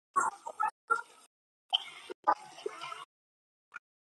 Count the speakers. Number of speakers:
0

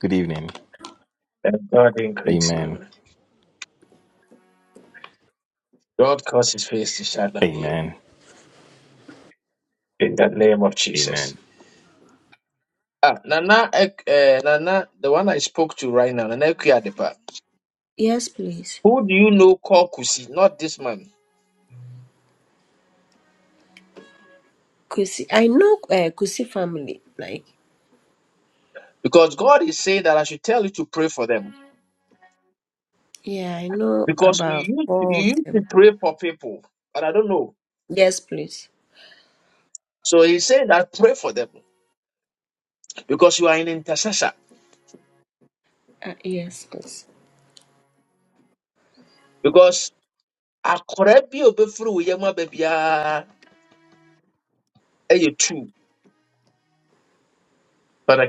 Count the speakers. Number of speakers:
3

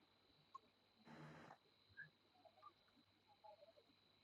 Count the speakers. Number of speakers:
0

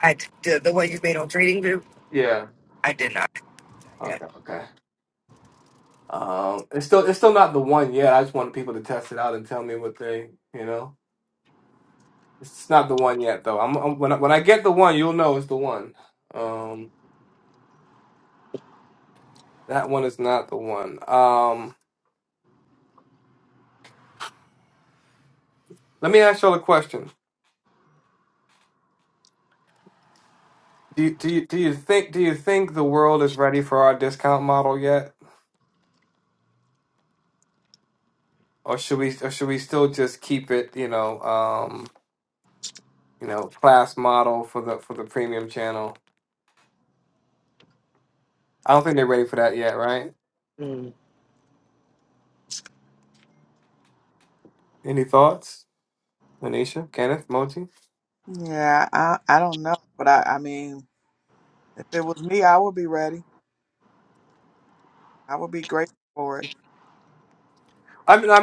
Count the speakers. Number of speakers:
3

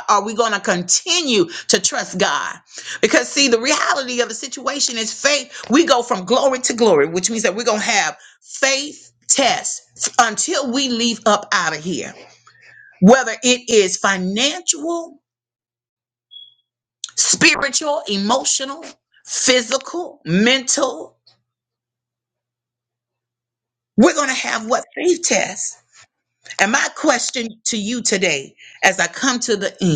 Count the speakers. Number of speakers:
1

